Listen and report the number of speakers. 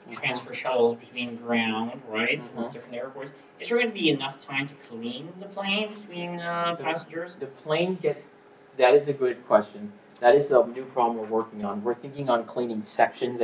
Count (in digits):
2